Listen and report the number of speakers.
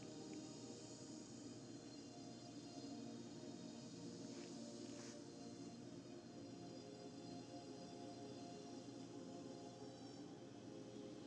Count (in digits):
0